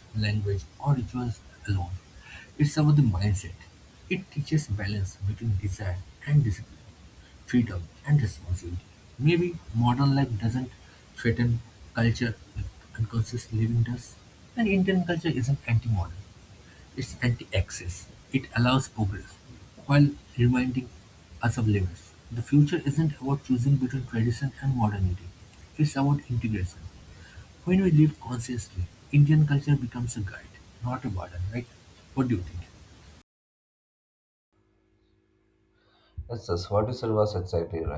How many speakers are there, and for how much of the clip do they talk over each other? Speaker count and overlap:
2, no overlap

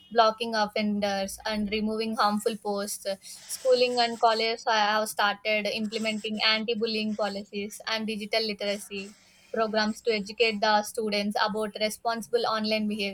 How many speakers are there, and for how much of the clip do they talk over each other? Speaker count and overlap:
1, no overlap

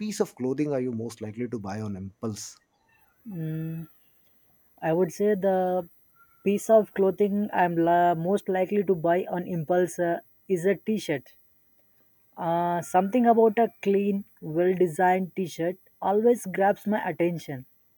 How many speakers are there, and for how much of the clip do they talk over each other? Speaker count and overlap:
2, no overlap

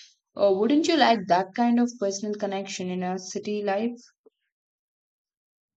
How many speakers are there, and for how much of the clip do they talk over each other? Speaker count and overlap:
1, no overlap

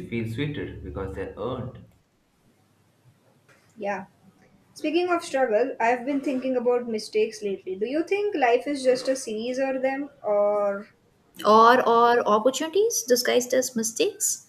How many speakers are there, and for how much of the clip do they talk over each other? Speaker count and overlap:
3, no overlap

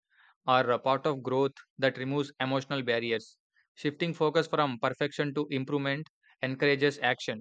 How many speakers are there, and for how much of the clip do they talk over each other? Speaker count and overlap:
1, no overlap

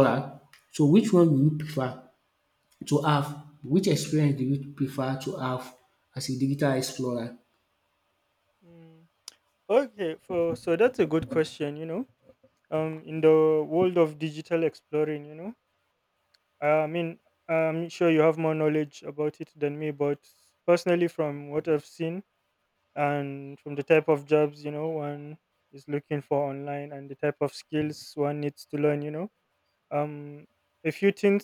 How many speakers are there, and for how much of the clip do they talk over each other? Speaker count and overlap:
2, no overlap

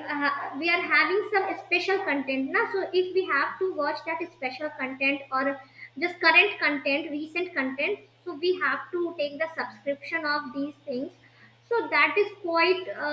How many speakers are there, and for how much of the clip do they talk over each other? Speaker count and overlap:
1, no overlap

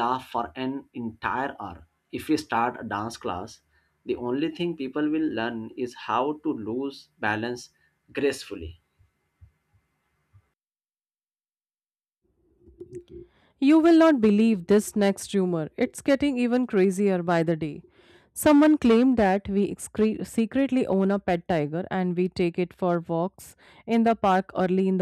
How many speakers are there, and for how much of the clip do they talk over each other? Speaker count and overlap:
2, no overlap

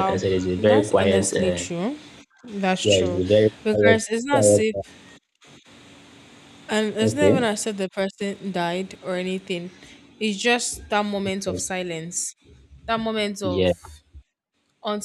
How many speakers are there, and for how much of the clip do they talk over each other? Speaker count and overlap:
2, about 23%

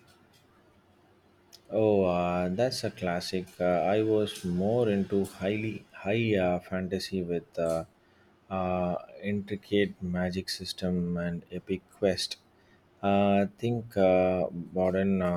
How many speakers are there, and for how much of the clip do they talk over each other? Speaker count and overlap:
1, no overlap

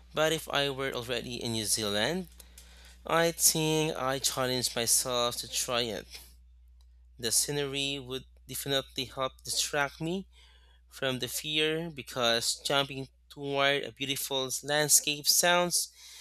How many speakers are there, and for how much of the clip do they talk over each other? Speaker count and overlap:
1, no overlap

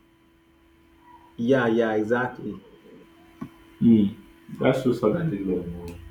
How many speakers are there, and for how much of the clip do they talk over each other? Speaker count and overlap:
2, no overlap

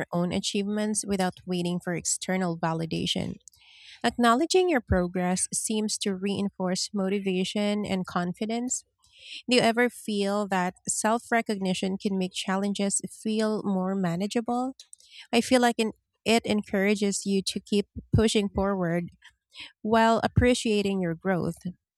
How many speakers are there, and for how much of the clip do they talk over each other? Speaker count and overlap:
1, no overlap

